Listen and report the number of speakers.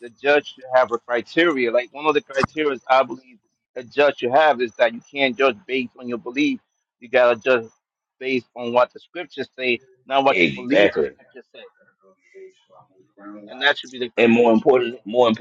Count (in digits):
2